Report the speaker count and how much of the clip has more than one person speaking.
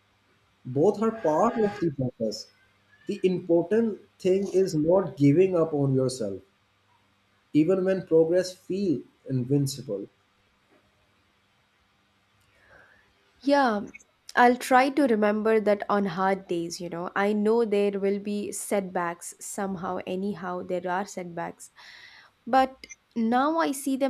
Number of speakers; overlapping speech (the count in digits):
2, no overlap